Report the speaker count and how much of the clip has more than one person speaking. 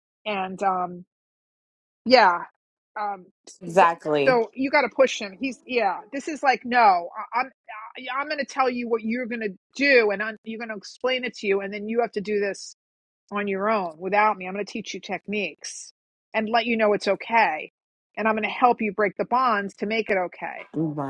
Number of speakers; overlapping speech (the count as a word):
two, about 2%